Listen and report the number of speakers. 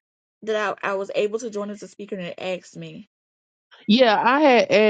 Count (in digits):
2